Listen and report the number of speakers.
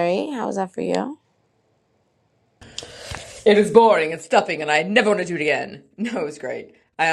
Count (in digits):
2